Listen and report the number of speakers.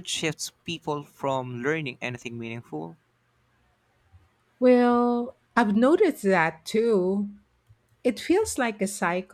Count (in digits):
2